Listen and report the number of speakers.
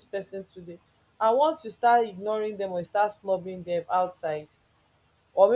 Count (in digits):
1